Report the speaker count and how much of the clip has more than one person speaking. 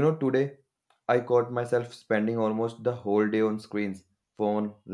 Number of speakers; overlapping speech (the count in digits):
1, no overlap